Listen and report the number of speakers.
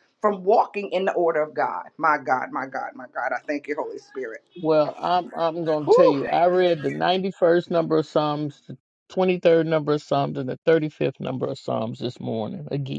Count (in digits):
2